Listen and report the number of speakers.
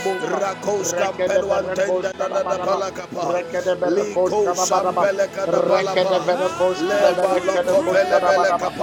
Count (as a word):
two